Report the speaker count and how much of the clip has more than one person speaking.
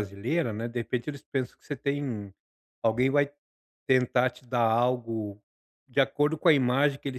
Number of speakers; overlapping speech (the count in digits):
1, no overlap